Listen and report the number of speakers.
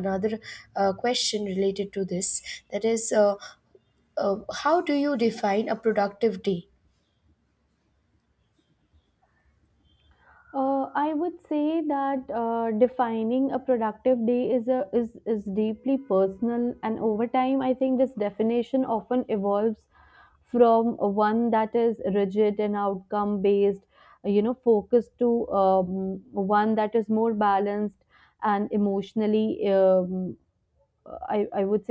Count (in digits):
2